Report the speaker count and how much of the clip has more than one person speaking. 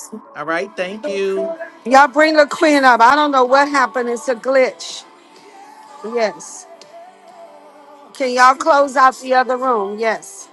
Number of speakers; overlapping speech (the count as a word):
two, no overlap